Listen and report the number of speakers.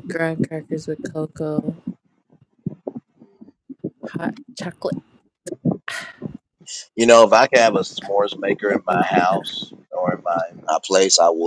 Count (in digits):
2